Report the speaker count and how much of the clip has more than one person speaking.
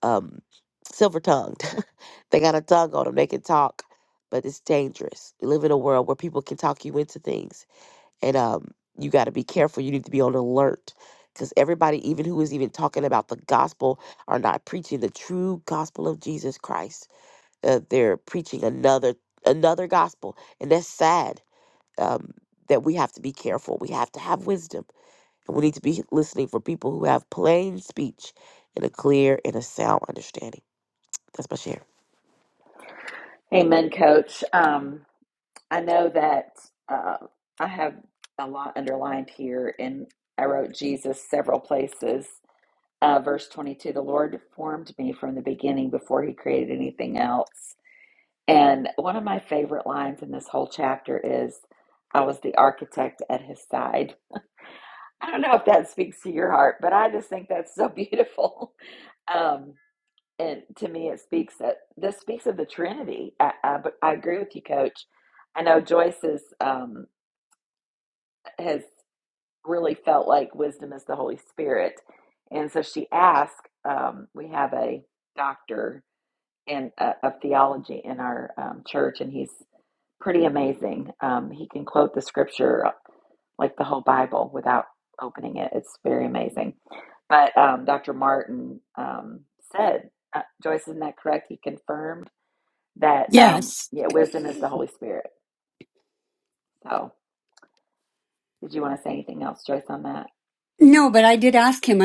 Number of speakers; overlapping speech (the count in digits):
3, under 1%